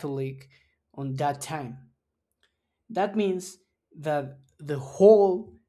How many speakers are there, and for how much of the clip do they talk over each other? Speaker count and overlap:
1, no overlap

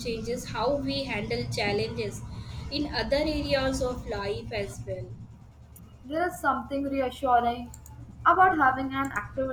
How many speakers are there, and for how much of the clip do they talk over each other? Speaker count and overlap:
2, no overlap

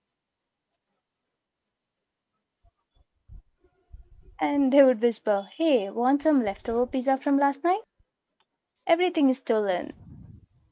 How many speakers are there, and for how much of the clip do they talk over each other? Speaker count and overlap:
1, no overlap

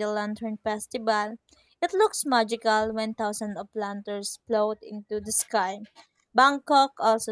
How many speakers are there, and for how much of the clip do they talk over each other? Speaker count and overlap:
1, no overlap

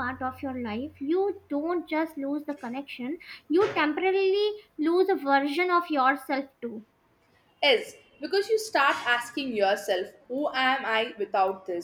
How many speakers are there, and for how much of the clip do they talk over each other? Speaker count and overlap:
2, no overlap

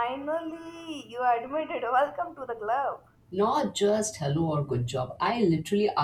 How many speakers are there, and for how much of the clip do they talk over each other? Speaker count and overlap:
2, no overlap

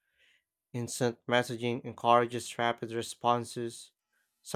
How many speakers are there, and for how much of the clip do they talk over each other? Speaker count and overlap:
1, no overlap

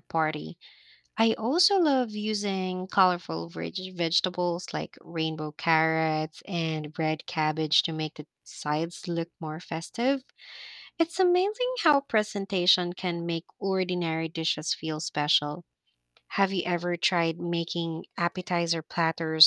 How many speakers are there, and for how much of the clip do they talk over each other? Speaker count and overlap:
1, no overlap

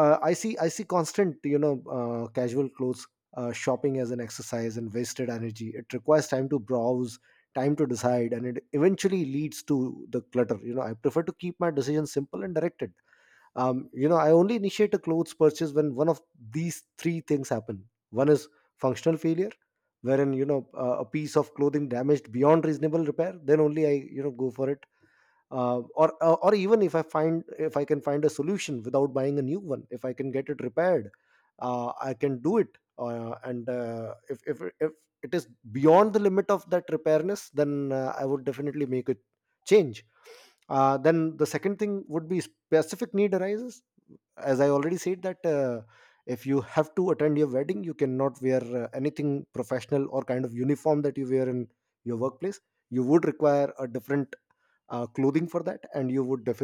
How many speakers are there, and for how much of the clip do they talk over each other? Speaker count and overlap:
1, no overlap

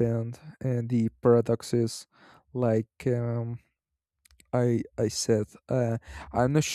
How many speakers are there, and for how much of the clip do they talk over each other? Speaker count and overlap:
1, no overlap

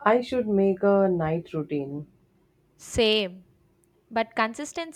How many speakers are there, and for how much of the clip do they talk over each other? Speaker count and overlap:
2, no overlap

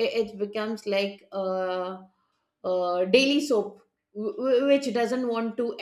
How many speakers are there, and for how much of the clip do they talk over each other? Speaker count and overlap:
1, no overlap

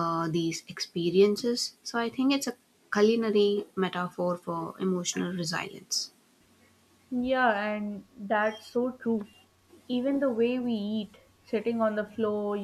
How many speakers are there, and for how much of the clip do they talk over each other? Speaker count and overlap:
2, no overlap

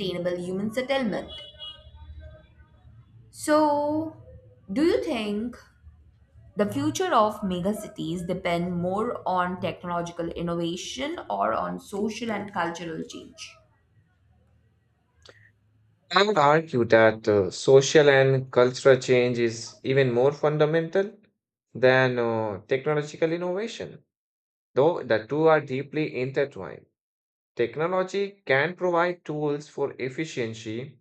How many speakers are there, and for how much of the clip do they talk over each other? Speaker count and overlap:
2, no overlap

